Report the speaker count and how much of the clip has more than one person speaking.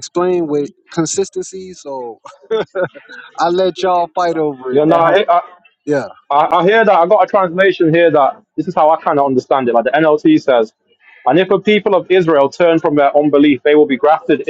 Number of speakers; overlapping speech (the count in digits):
2, about 3%